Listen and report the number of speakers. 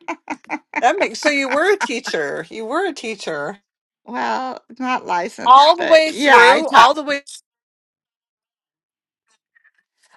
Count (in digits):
2